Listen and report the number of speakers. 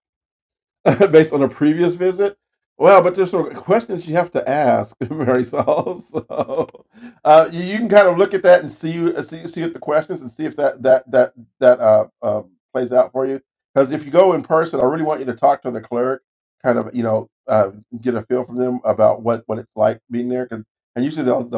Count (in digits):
1